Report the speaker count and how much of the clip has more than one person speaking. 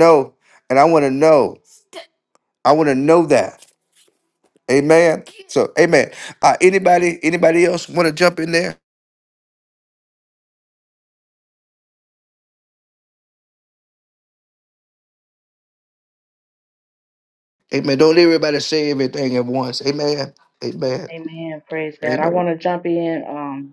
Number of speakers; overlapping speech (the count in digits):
2, about 2%